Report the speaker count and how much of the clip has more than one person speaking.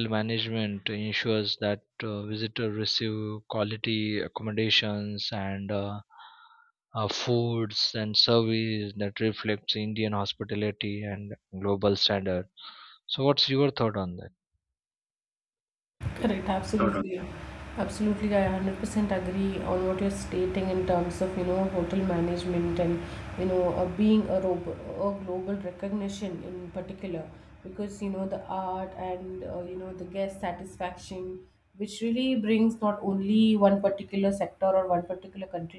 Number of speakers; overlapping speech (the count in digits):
2, no overlap